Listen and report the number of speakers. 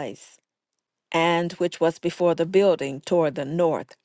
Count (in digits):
1